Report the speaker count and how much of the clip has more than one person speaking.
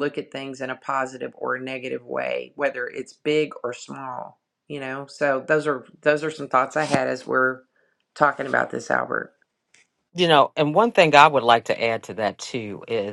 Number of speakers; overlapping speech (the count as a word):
two, no overlap